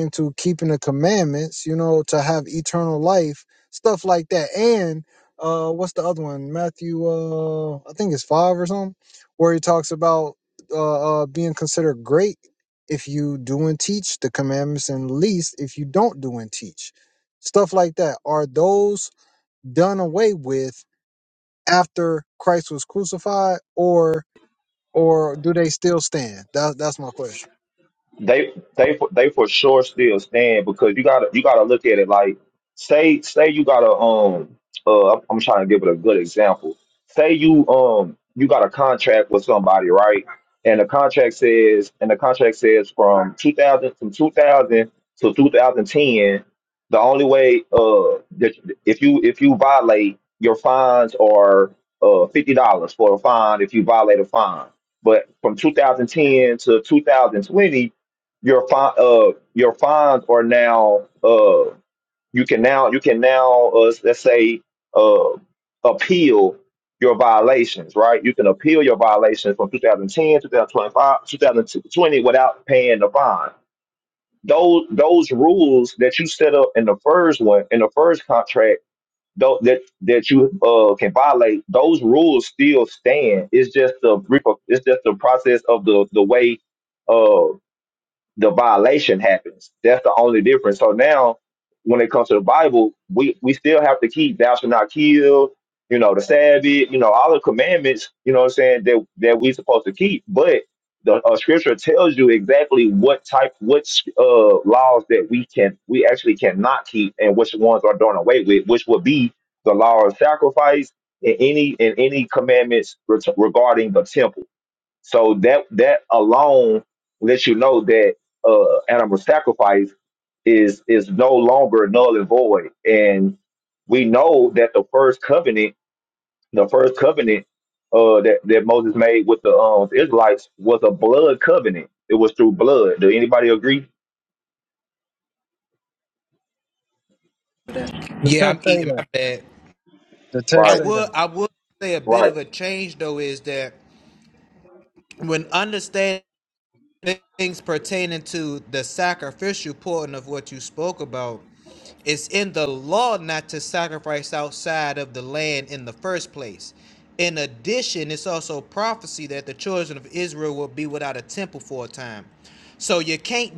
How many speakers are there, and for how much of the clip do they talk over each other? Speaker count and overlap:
3, about 1%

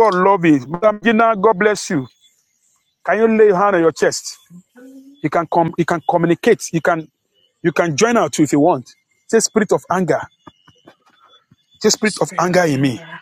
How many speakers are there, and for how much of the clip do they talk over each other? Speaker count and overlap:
1, no overlap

